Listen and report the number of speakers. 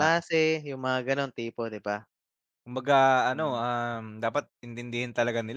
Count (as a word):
two